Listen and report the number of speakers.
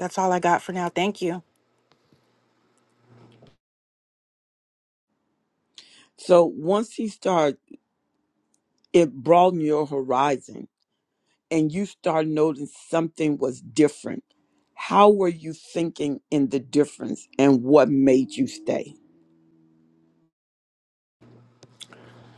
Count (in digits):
2